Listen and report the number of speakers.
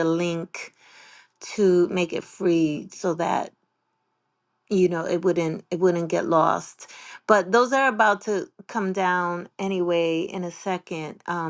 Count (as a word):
one